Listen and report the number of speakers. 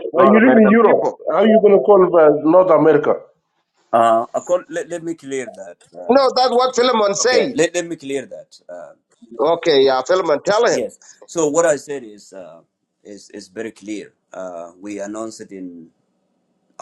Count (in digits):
3